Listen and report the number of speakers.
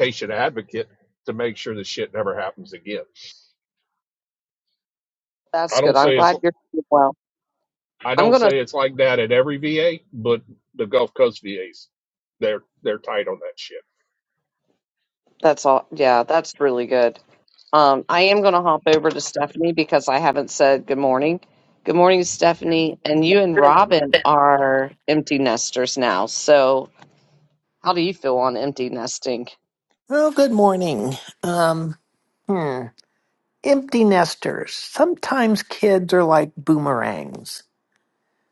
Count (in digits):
3